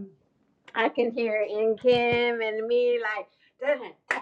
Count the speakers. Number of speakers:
one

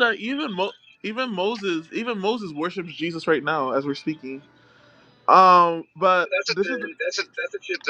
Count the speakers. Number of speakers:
two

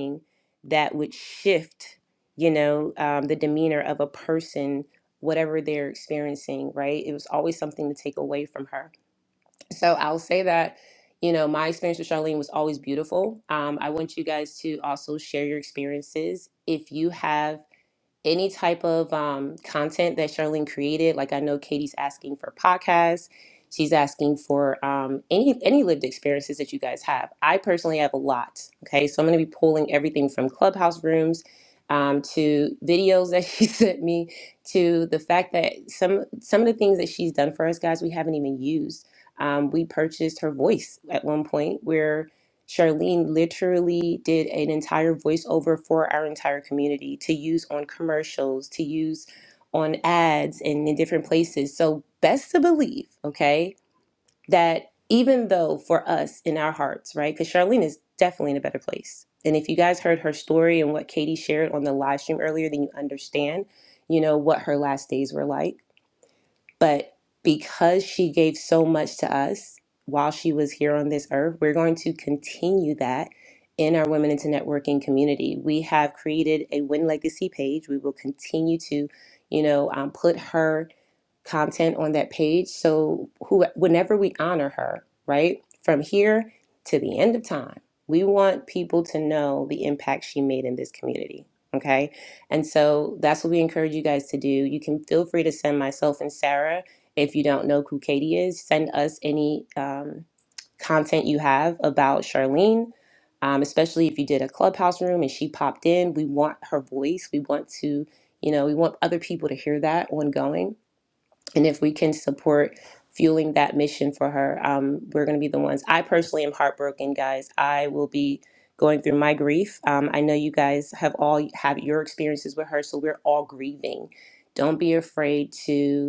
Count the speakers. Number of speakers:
one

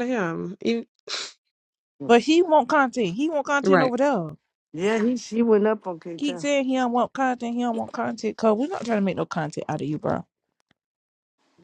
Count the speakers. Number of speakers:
three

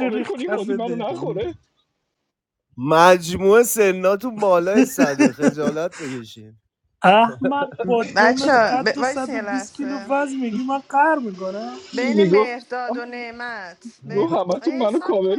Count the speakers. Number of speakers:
four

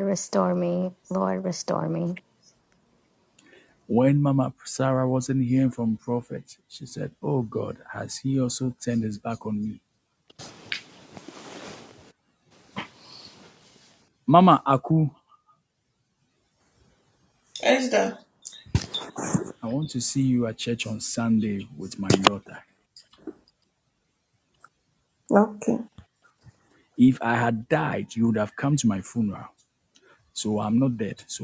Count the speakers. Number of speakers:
three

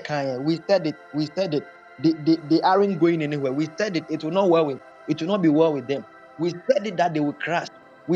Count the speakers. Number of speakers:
one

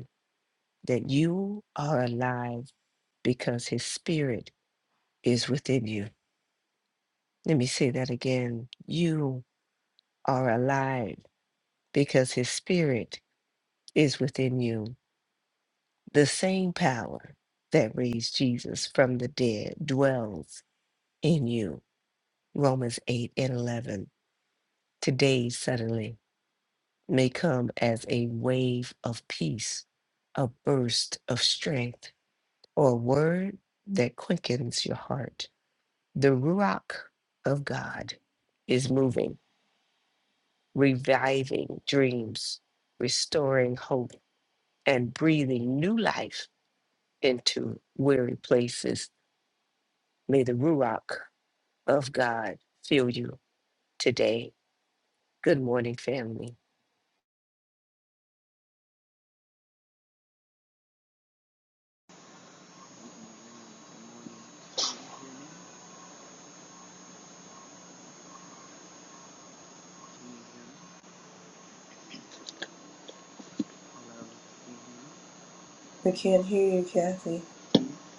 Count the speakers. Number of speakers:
two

